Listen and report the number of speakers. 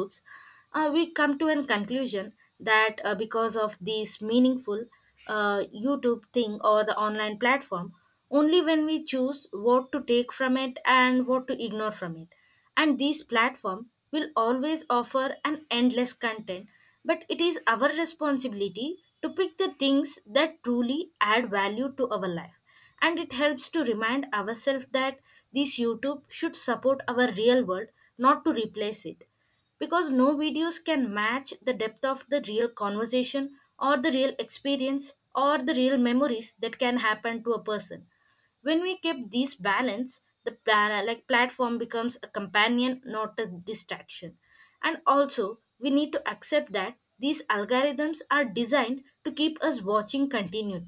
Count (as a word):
one